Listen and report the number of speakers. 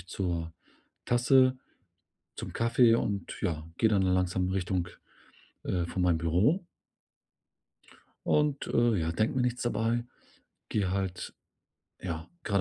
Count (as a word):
one